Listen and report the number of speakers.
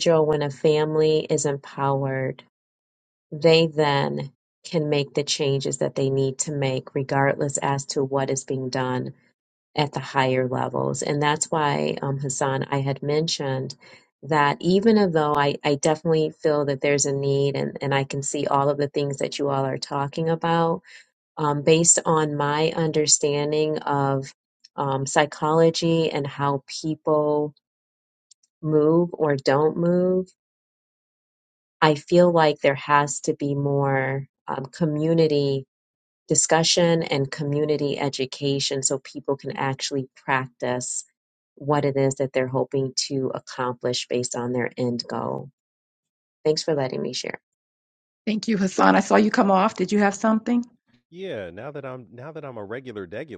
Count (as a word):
three